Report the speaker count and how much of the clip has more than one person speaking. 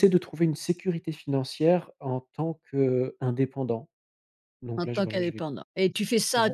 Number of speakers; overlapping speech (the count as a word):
two, about 13%